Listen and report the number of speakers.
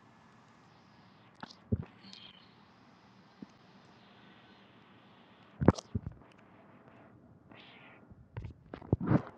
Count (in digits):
0